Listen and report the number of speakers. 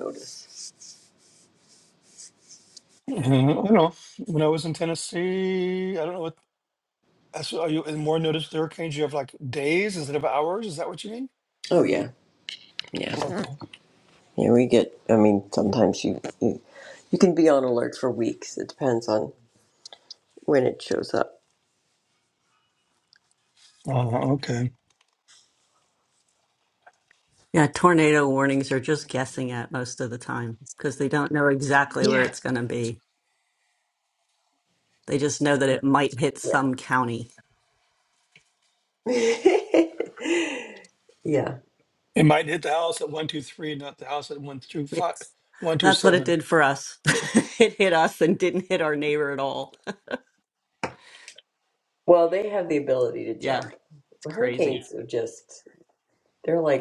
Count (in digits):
3